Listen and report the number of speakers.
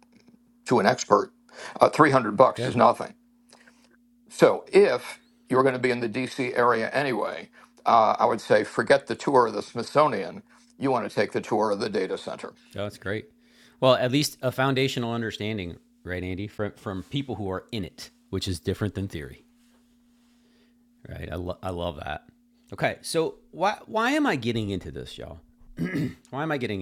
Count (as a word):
two